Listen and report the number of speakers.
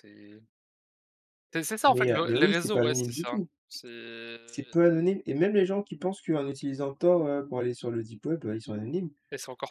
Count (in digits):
2